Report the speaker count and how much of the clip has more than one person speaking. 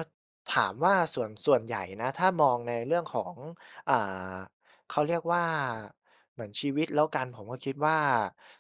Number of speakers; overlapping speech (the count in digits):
1, no overlap